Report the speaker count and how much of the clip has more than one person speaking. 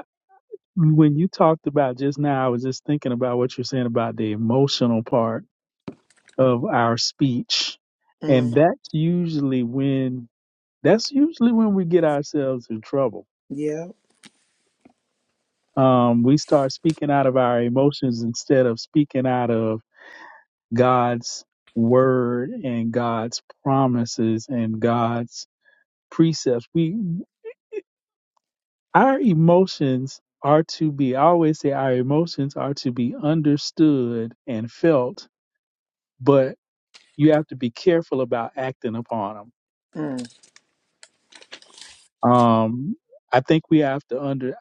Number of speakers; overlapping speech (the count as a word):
two, under 1%